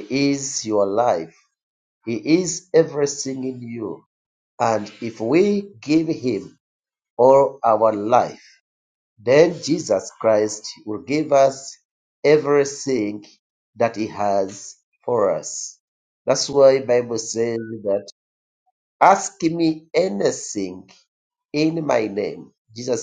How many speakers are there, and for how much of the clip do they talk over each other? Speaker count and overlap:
1, no overlap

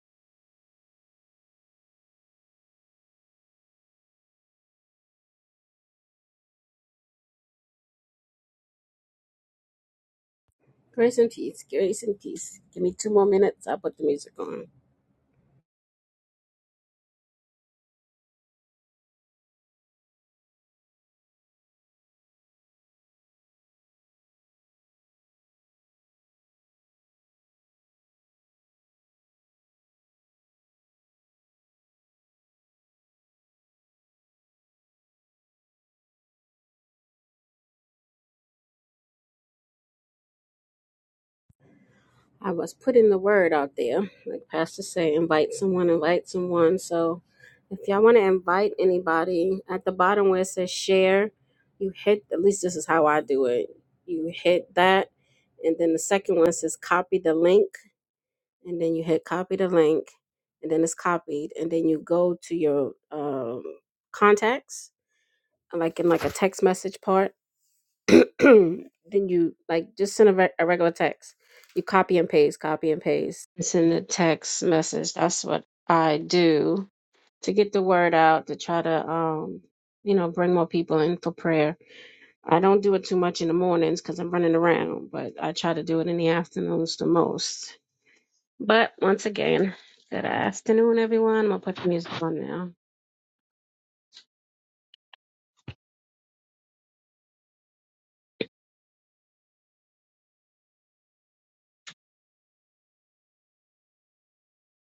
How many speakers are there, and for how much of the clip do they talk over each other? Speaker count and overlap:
1, no overlap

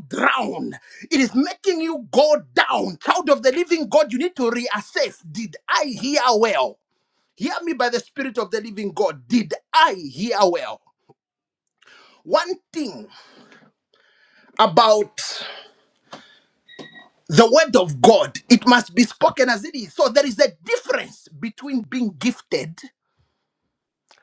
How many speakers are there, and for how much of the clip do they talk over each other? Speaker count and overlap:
1, no overlap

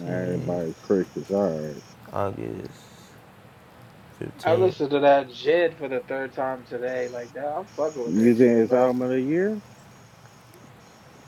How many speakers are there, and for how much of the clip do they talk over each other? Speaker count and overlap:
3, about 16%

